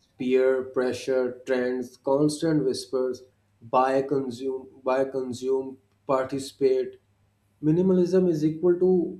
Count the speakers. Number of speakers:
one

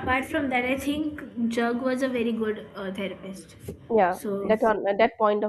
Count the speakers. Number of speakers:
two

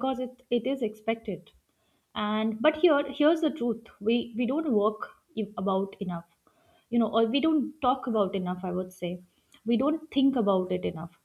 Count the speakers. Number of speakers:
one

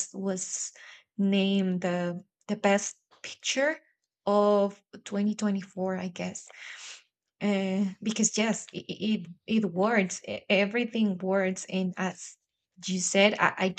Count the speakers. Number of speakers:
one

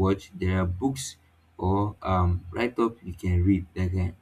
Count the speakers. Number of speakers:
one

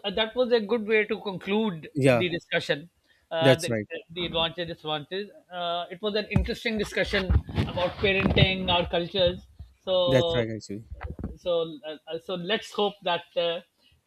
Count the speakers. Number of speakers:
two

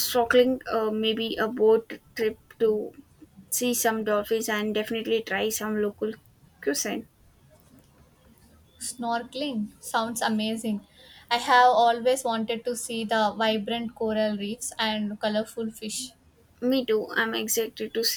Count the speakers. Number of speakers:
two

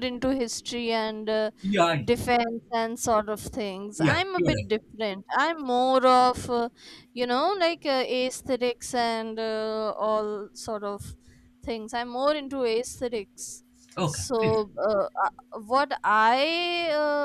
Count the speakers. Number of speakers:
two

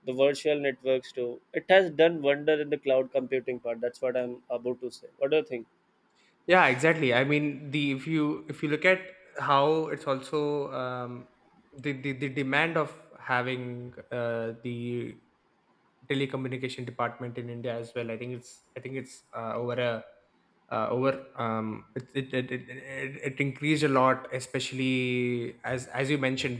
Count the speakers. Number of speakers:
two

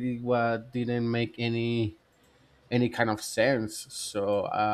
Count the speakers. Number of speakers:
one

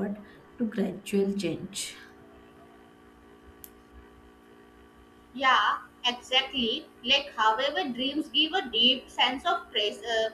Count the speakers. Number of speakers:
two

